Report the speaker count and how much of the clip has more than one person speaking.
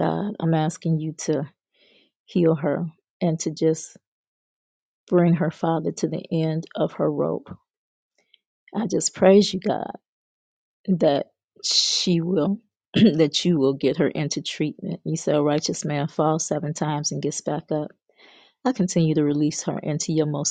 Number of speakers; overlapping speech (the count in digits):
1, no overlap